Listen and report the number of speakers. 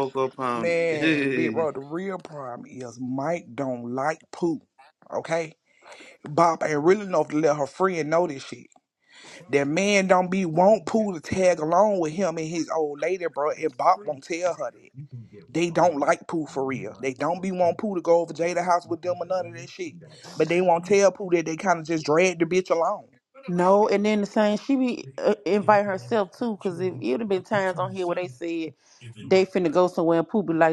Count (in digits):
3